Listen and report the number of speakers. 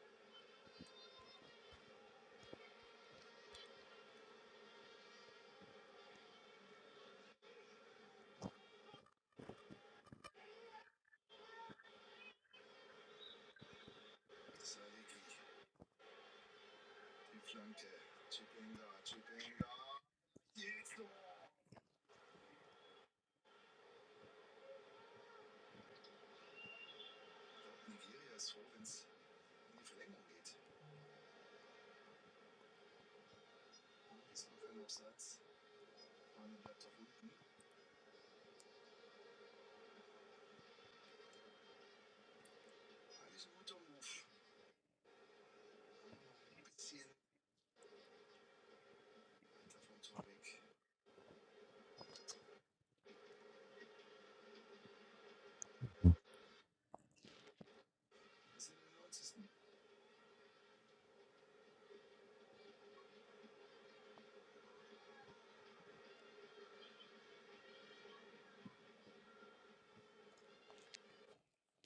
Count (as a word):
zero